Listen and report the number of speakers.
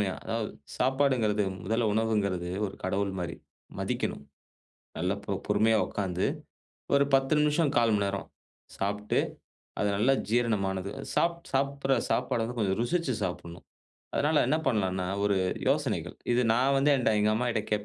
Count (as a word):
one